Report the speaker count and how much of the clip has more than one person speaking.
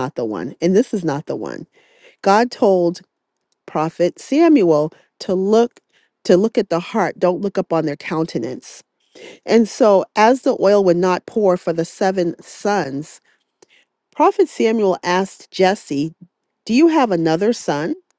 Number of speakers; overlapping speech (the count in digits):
1, no overlap